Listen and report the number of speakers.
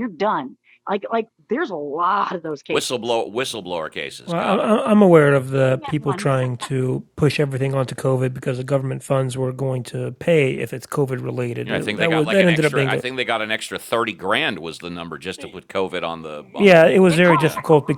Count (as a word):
three